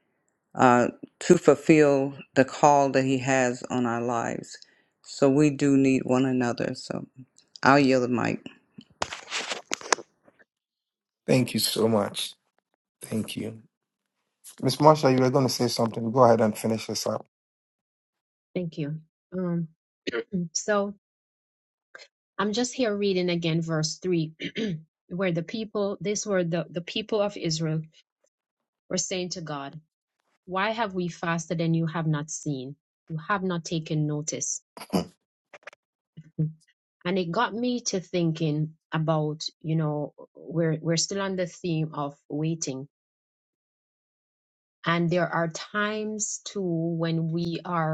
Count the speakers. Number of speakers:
3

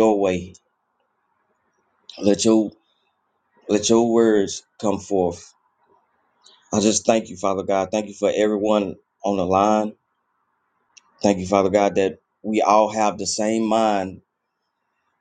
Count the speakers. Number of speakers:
1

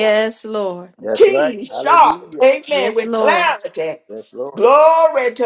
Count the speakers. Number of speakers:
3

